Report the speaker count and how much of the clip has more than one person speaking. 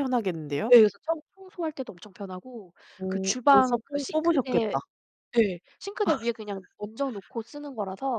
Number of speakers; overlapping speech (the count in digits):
2, about 21%